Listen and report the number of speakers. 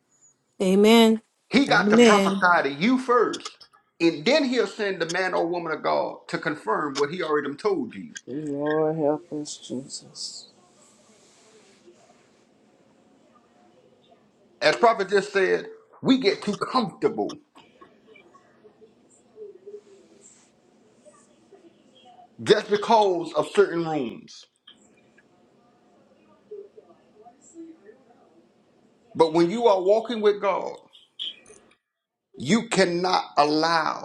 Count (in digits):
3